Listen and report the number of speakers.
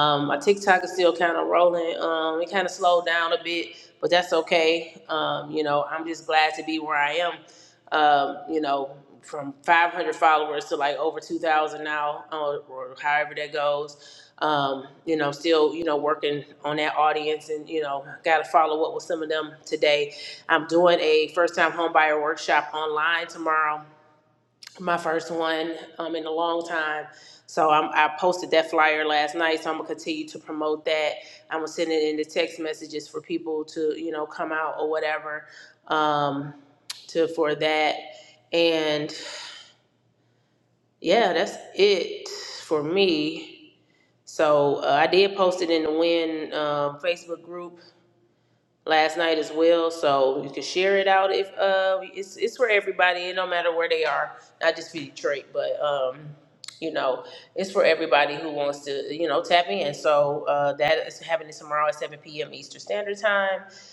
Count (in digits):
1